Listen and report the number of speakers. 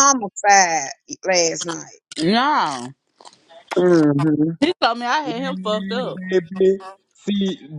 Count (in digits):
3